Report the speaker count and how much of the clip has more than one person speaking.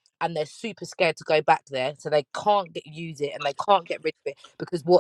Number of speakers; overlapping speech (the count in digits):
1, no overlap